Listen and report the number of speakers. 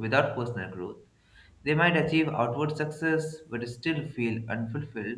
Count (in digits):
1